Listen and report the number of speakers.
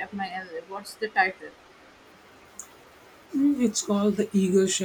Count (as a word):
two